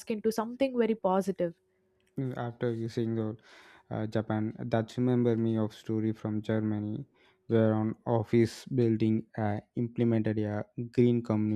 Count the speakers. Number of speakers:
two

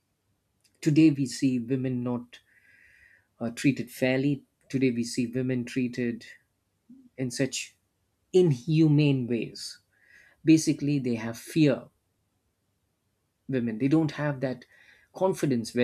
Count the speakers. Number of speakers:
one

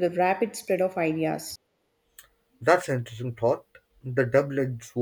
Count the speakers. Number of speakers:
two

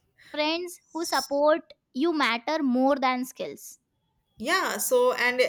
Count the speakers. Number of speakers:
two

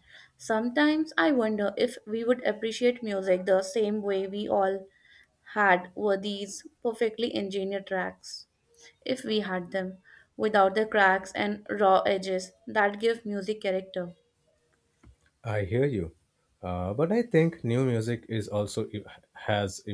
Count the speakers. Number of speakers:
two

